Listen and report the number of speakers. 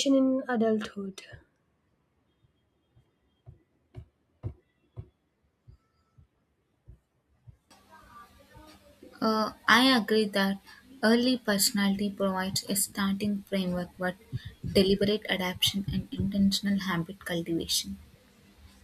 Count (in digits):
2